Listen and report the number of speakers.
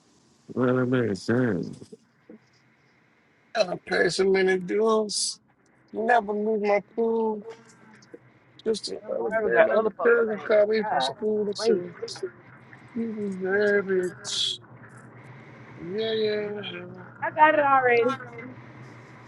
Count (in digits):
3